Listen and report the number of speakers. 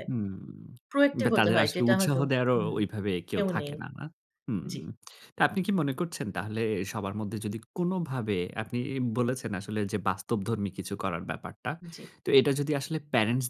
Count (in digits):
2